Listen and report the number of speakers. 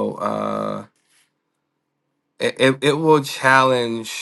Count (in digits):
1